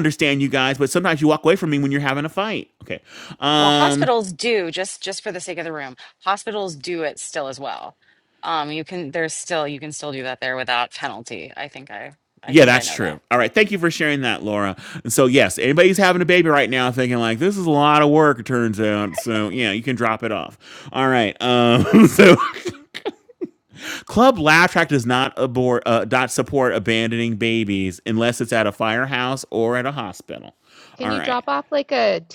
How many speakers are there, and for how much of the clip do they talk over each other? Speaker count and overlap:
3, about 5%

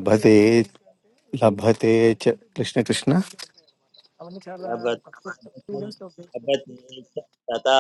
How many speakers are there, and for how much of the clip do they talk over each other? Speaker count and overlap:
2, no overlap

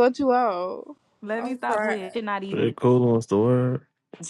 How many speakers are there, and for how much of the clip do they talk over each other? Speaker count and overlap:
3, about 21%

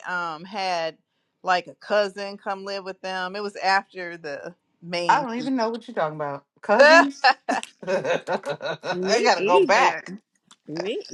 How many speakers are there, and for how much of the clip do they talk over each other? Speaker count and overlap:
3, about 12%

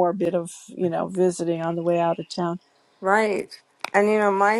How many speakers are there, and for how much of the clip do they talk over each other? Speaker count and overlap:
2, no overlap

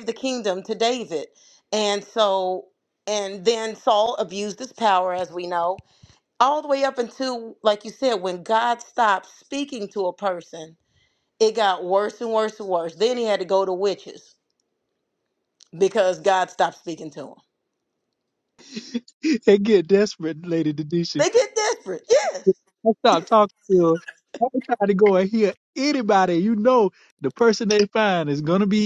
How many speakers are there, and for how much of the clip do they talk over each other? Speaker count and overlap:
2, under 1%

